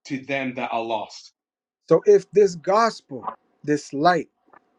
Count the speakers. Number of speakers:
2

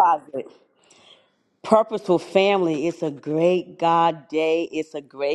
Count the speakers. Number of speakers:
1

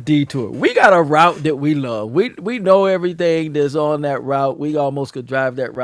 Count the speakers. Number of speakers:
1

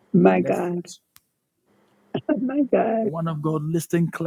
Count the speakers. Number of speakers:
2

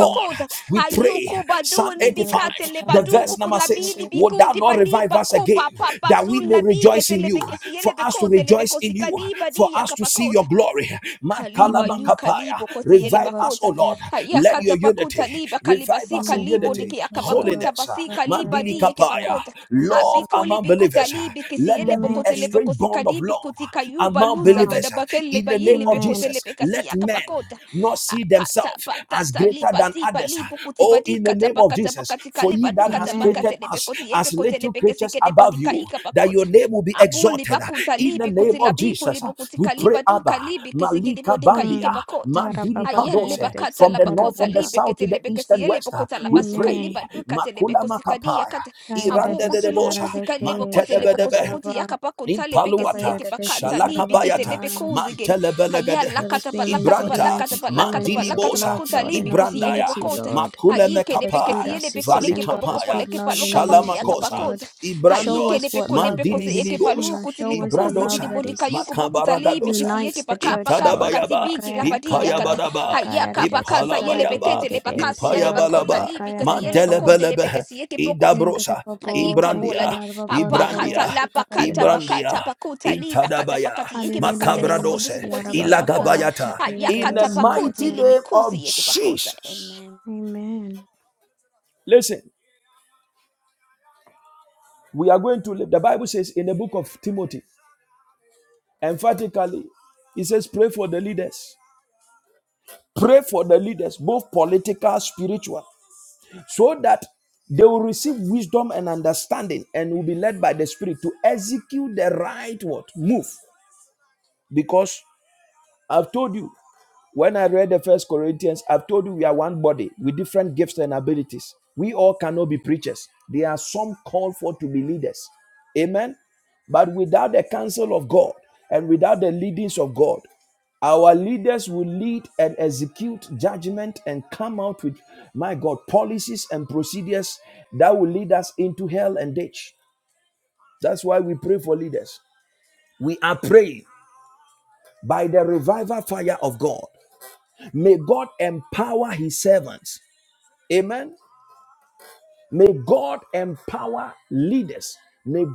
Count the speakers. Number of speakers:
3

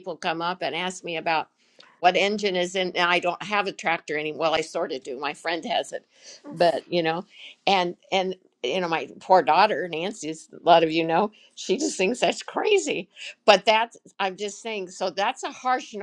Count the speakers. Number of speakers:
1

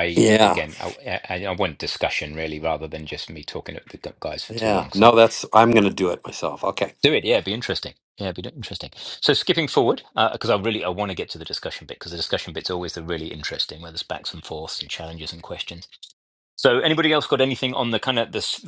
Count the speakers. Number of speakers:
2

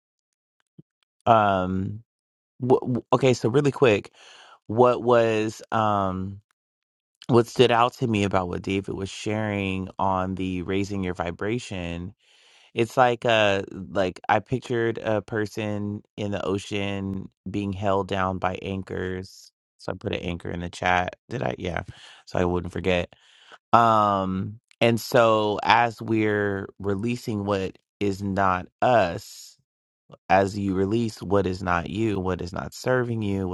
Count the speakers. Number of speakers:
1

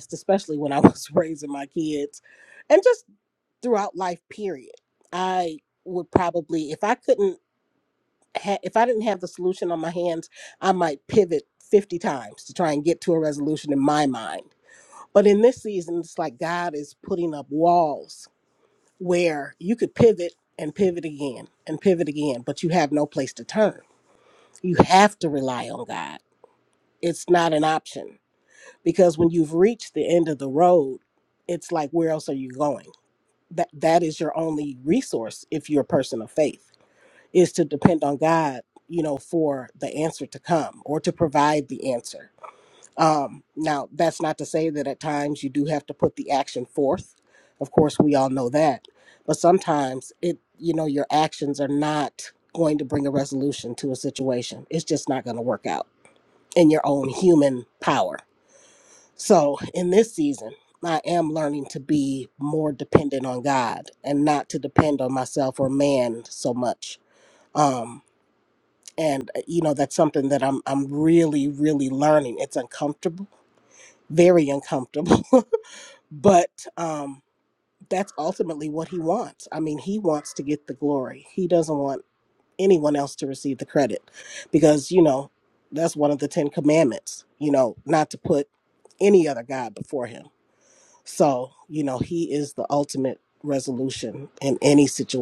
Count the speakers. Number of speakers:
1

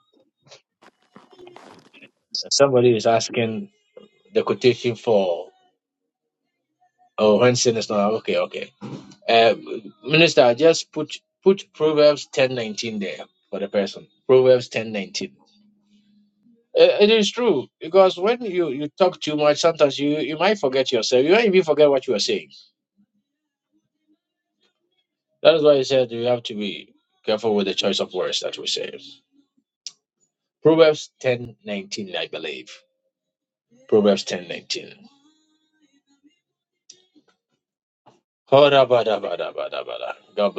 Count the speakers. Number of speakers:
1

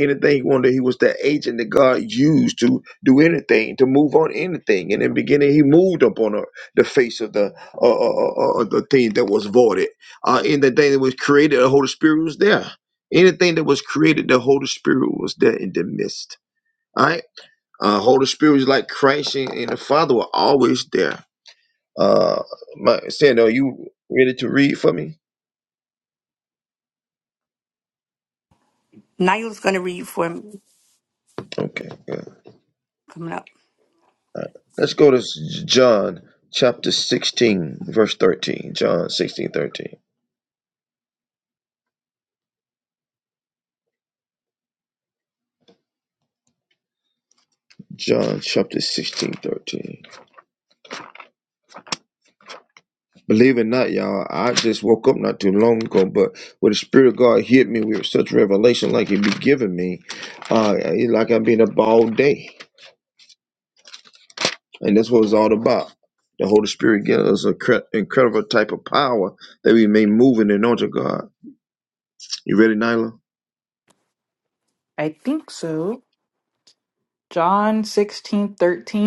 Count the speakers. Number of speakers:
3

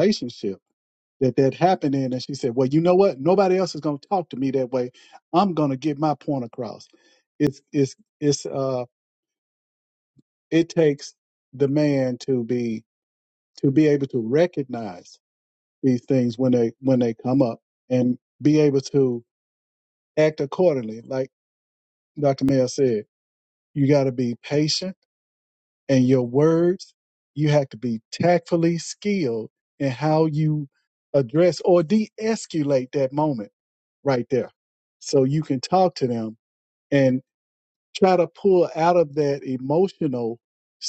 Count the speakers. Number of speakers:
1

